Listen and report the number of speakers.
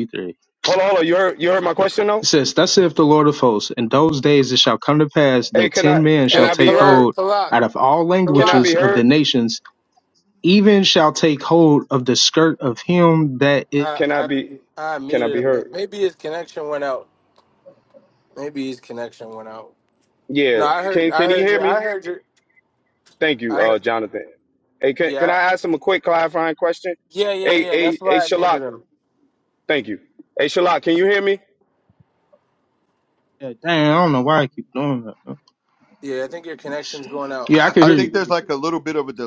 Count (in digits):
4